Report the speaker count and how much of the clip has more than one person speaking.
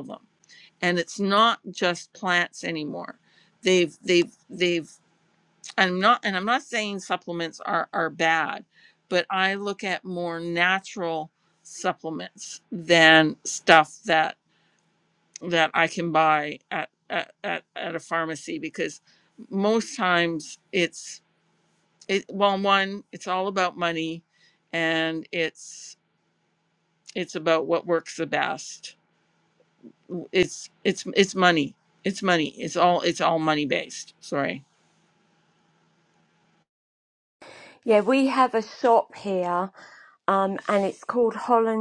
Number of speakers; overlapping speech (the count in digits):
2, no overlap